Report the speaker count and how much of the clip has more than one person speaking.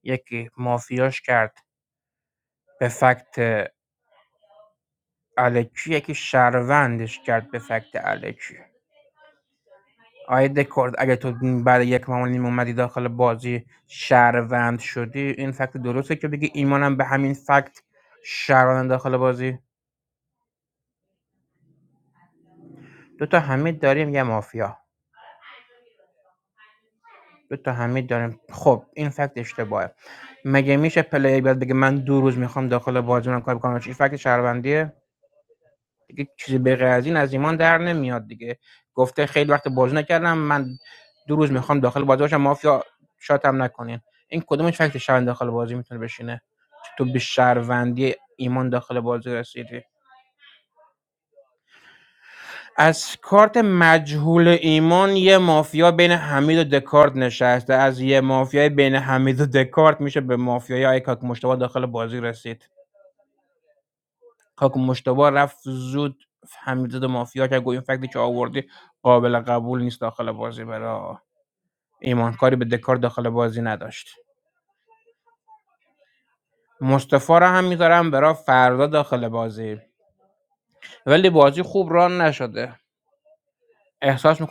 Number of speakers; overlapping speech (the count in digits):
1, no overlap